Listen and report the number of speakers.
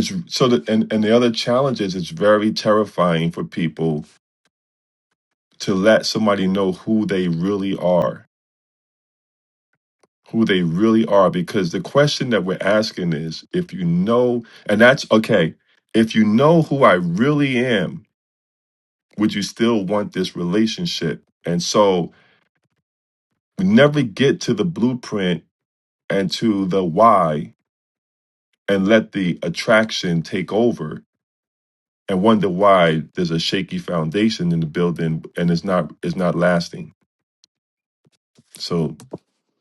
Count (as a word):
one